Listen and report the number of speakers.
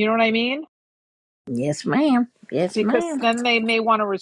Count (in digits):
2